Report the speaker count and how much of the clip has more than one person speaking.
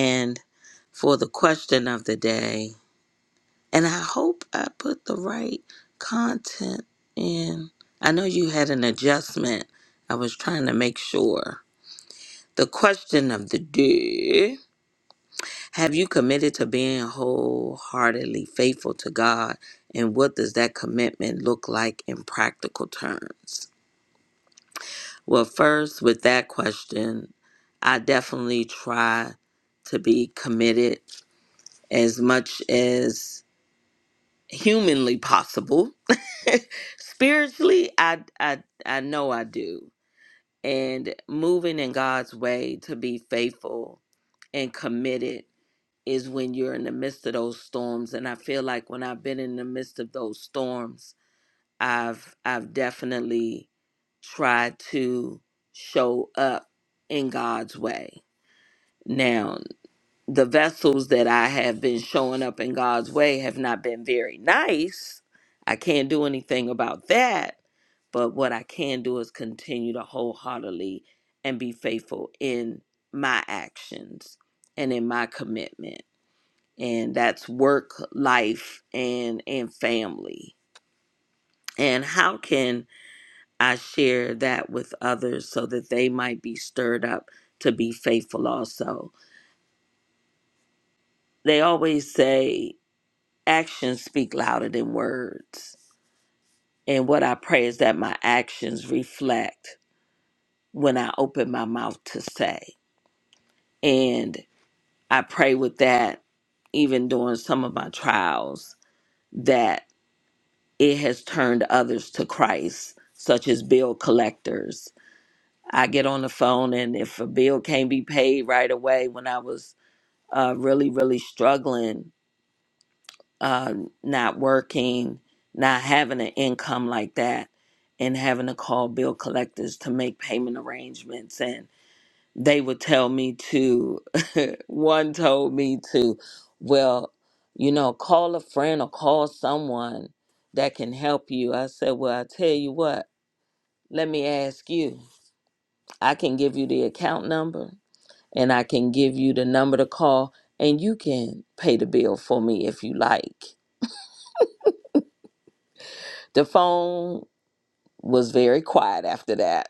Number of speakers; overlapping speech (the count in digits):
1, no overlap